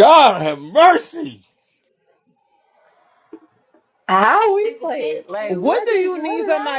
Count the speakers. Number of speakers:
three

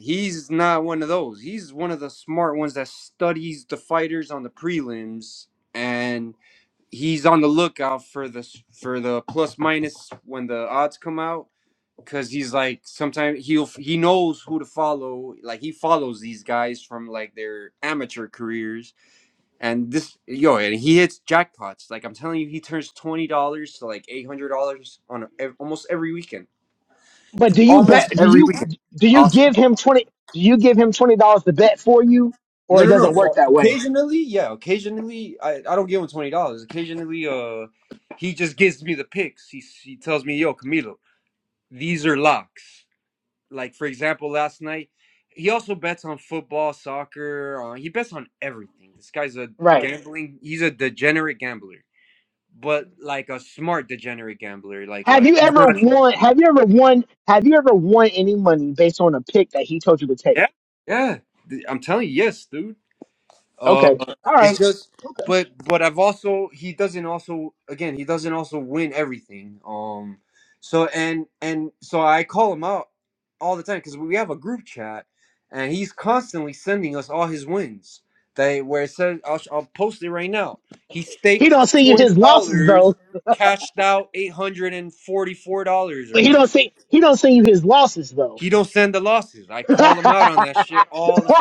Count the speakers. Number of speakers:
two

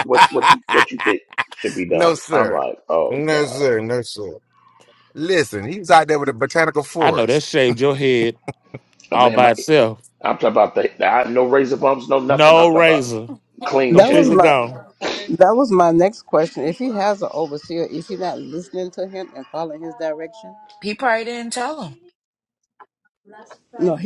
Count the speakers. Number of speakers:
five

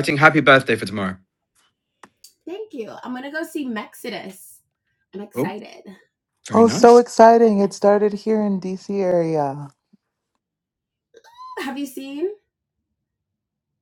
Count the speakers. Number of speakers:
three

